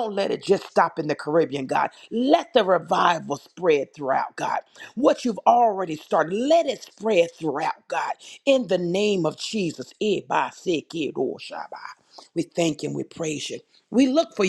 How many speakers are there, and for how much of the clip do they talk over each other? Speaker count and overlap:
one, no overlap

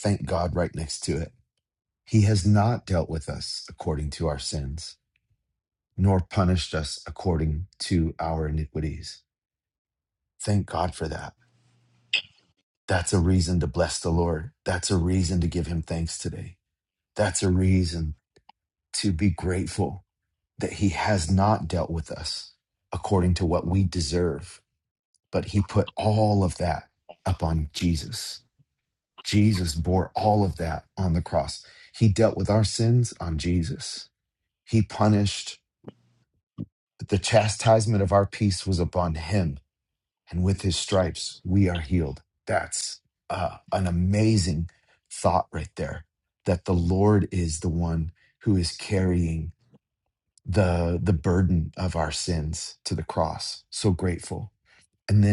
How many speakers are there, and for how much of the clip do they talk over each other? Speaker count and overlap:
one, no overlap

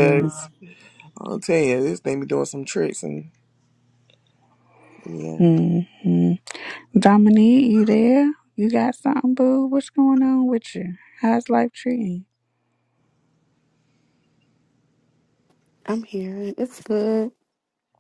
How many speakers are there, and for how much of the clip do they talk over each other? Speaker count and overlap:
three, under 1%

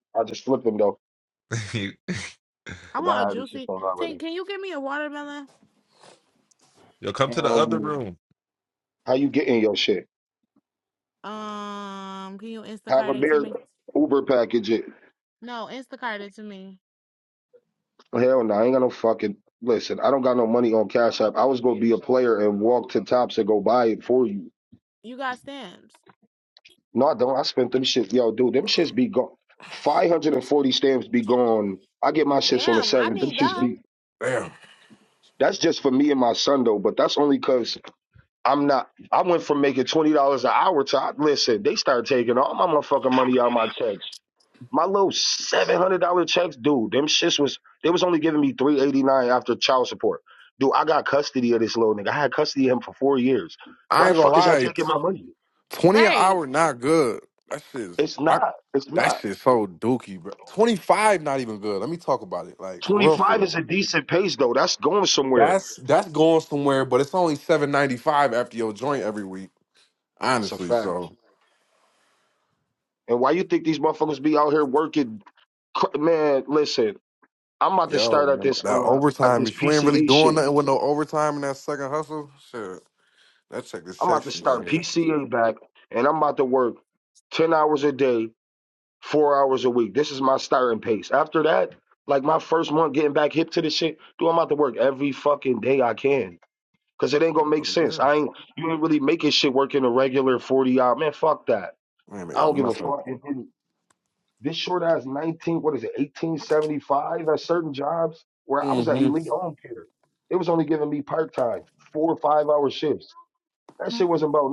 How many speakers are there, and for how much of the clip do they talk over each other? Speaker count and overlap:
four, about 10%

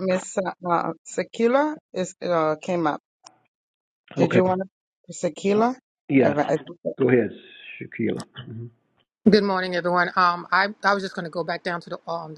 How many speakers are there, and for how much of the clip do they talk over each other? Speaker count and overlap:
three, about 5%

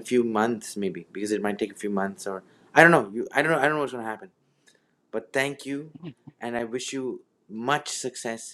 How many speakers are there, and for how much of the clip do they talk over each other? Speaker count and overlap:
one, no overlap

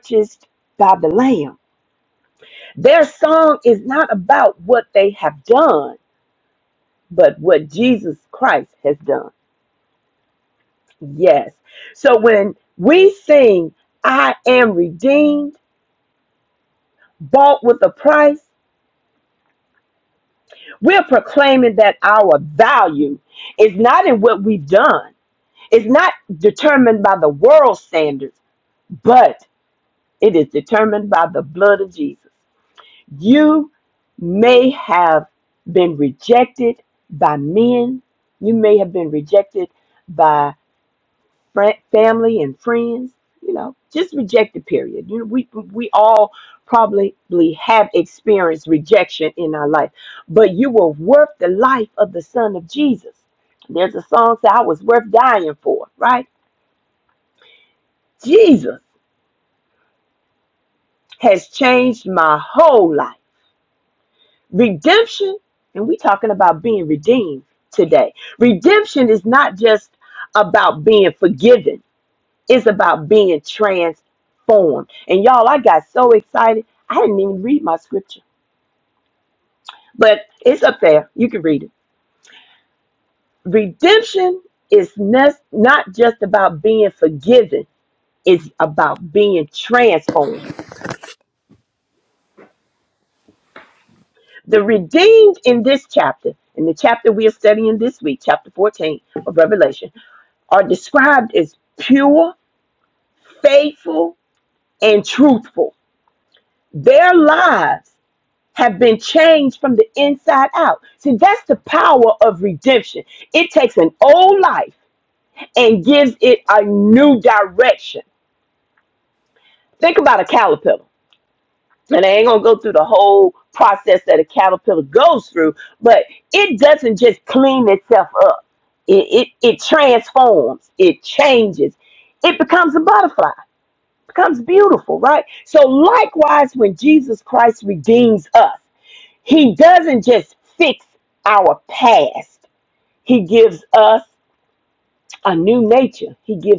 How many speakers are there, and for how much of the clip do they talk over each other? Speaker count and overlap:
one, no overlap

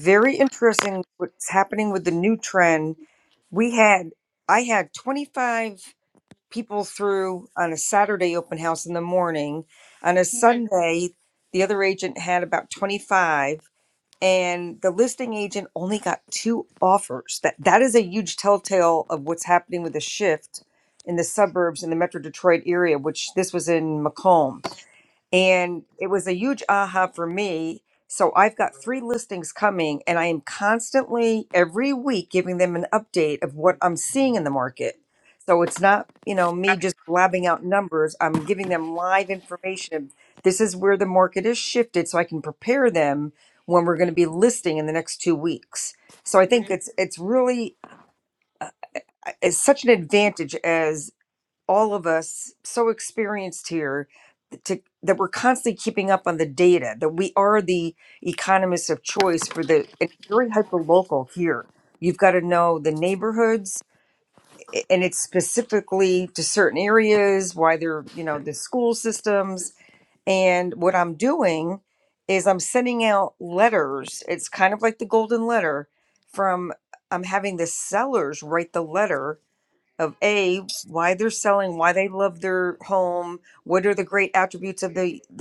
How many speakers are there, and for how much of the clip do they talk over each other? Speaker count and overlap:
one, no overlap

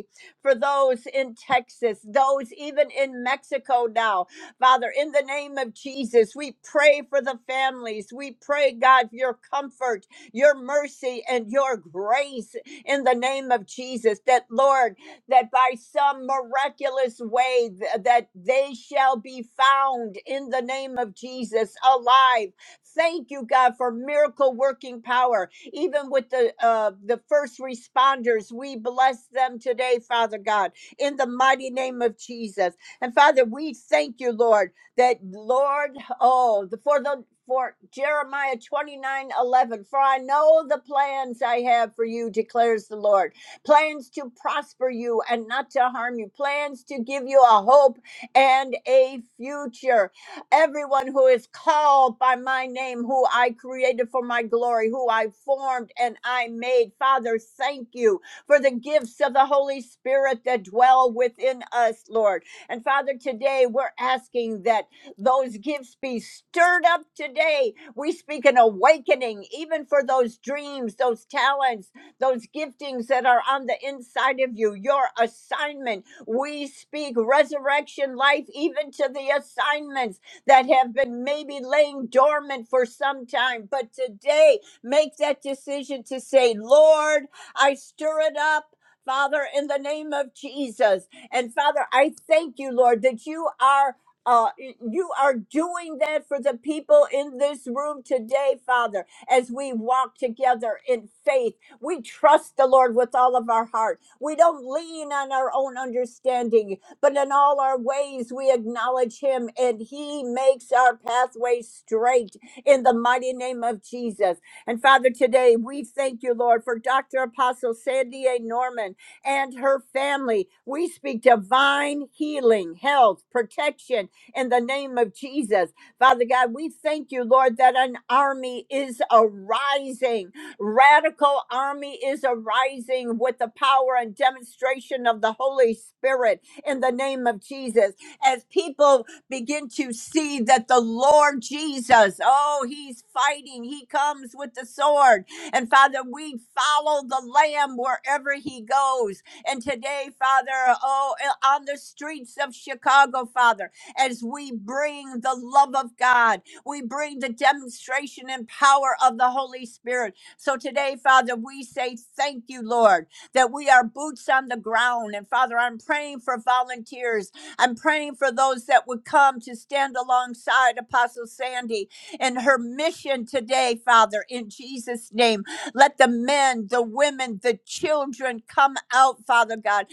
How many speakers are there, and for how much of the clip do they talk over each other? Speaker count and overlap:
one, no overlap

